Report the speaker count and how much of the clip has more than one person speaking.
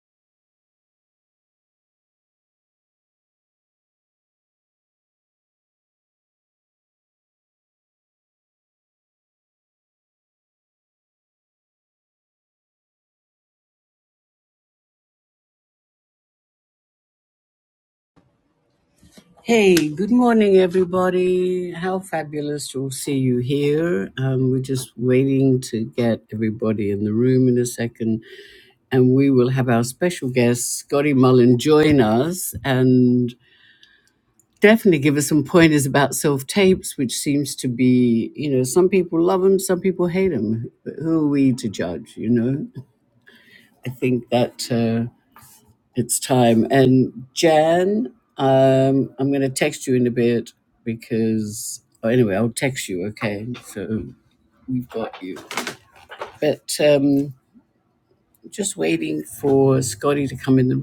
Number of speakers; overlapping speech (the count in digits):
1, no overlap